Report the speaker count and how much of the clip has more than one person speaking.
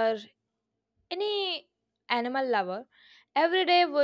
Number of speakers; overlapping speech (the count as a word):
one, no overlap